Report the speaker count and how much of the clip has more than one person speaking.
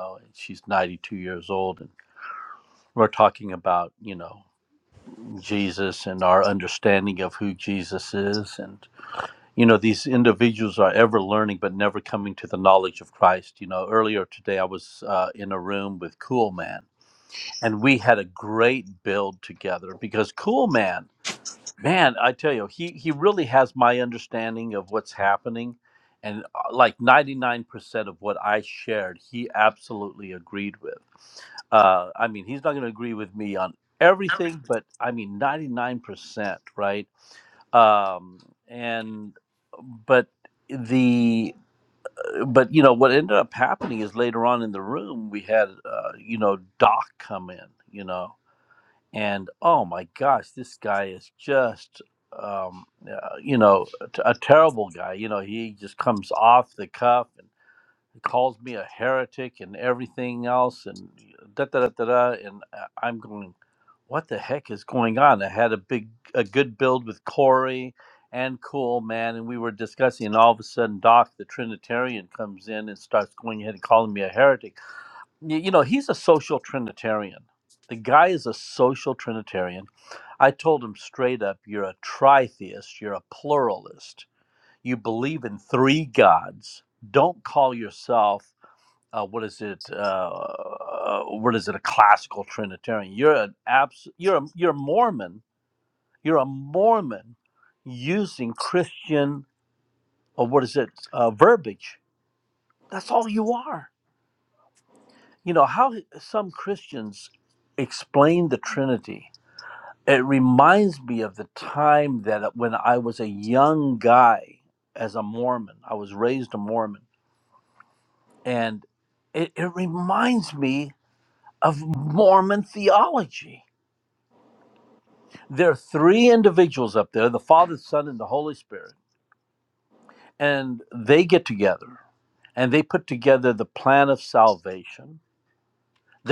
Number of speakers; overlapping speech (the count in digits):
1, no overlap